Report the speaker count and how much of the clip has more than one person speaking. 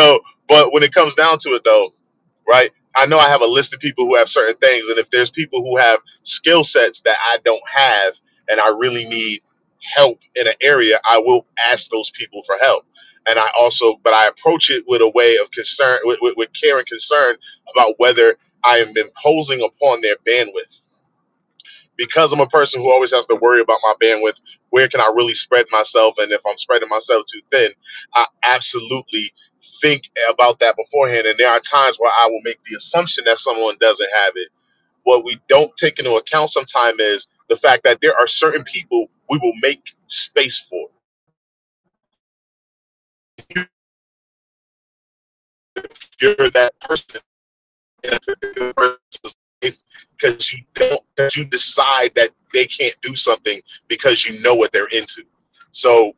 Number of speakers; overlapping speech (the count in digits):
1, no overlap